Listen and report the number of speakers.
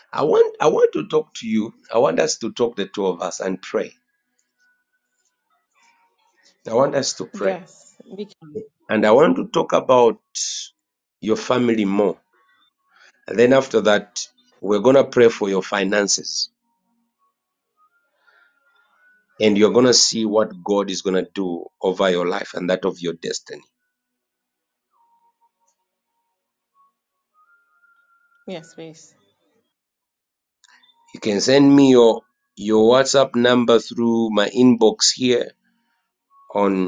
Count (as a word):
two